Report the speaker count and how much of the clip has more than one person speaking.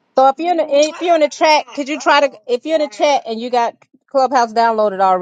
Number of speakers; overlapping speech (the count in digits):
1, no overlap